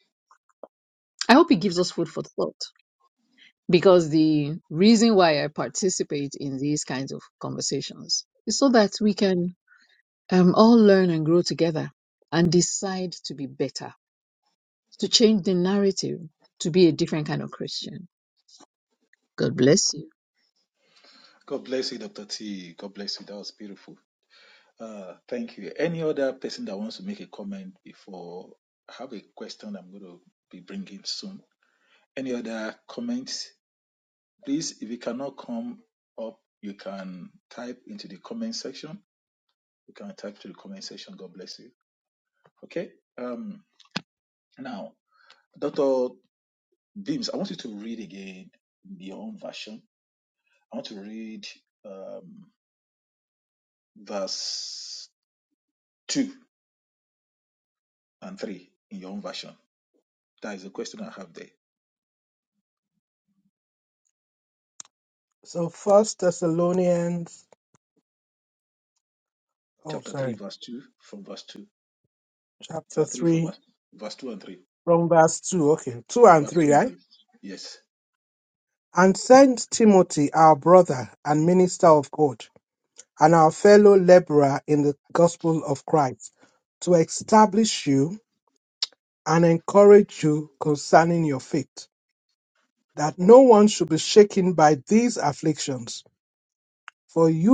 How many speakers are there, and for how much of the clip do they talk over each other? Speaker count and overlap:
3, about 2%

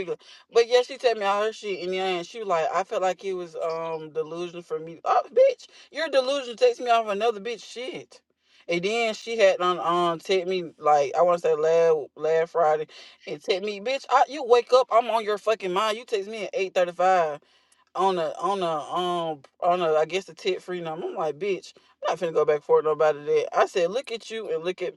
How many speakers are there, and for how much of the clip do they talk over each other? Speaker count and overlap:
1, no overlap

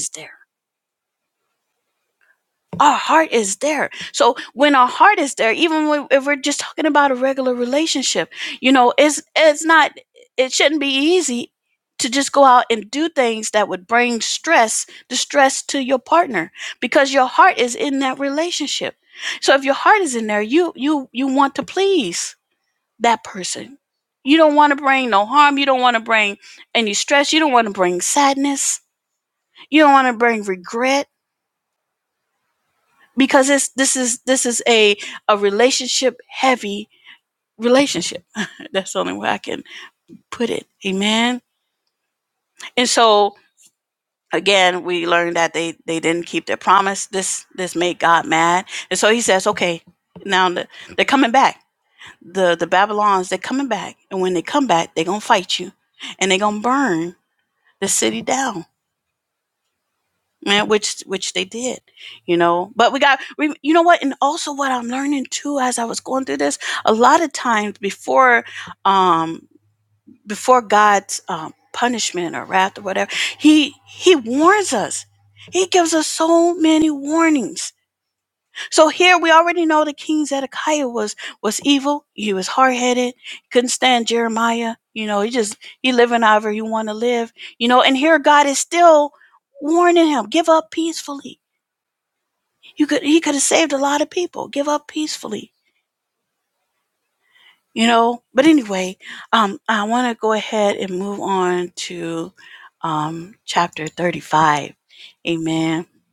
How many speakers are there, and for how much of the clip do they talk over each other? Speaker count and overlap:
1, no overlap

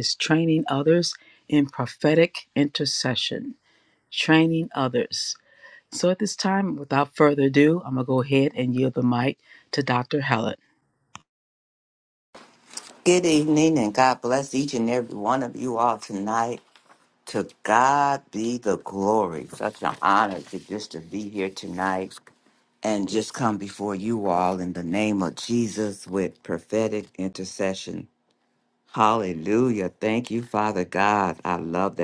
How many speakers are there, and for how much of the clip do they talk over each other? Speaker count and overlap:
2, no overlap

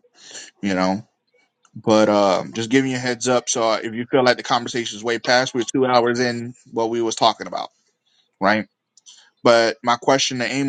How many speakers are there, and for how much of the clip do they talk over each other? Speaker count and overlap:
1, no overlap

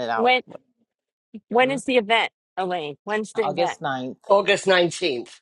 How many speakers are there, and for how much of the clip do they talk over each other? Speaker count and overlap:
3, about 13%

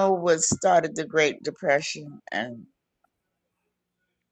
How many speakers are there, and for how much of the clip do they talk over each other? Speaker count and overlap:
1, no overlap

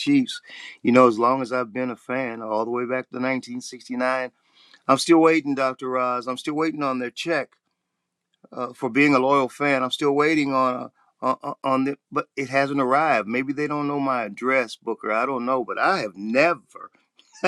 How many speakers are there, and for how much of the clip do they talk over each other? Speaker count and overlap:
1, no overlap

